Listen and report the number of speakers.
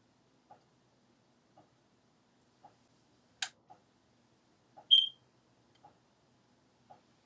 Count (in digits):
0